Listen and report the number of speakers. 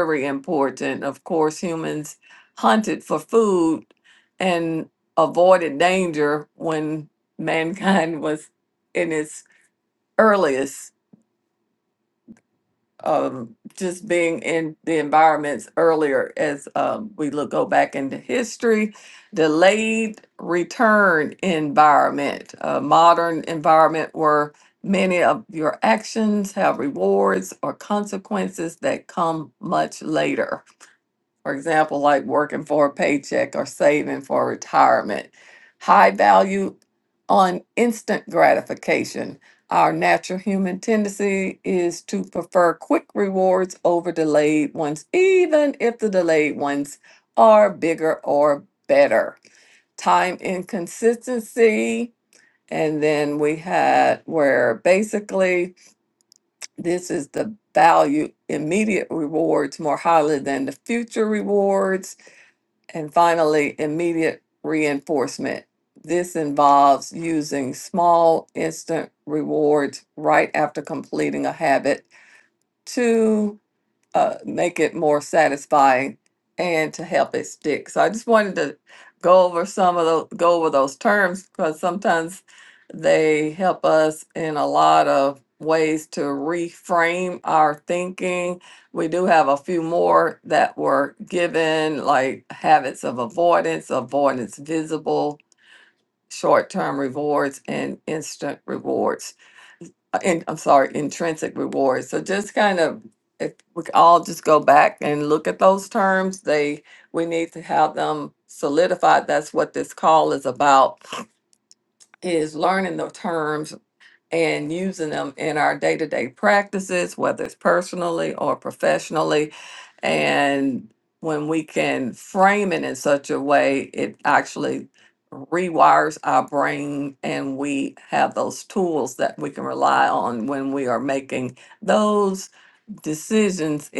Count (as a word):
one